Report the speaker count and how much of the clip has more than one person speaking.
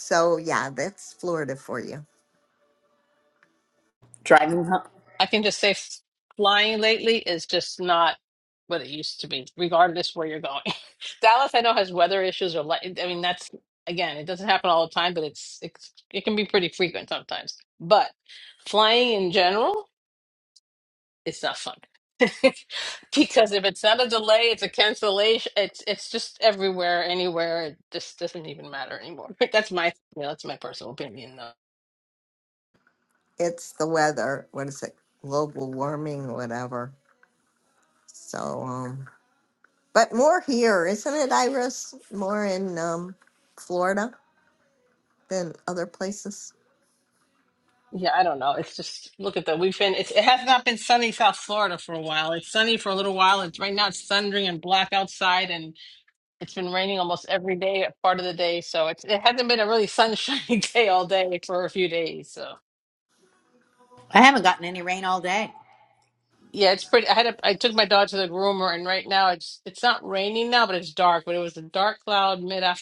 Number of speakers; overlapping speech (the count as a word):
three, no overlap